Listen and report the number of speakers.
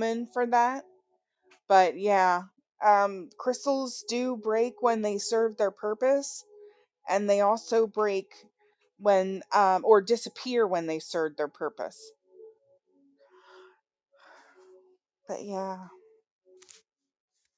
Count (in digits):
1